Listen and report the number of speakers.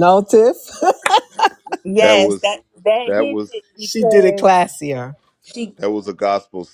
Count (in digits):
3